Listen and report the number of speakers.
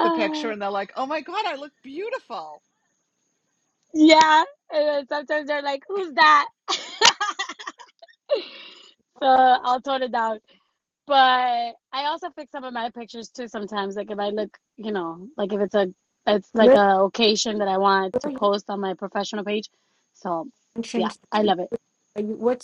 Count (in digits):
3